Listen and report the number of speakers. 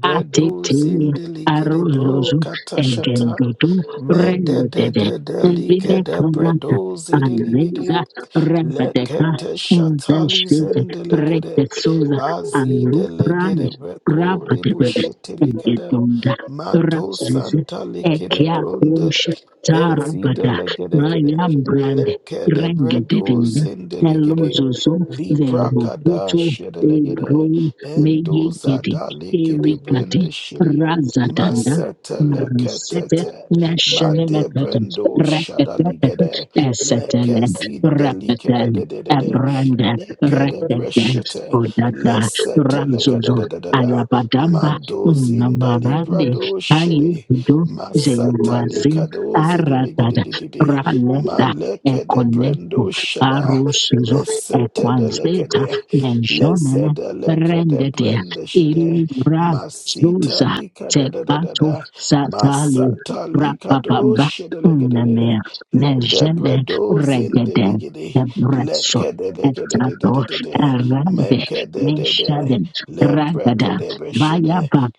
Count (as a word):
two